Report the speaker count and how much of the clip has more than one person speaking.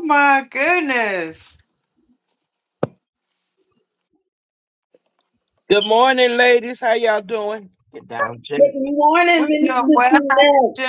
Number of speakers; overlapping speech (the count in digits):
3, about 8%